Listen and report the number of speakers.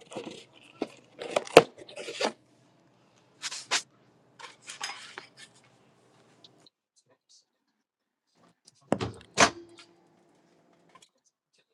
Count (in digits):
0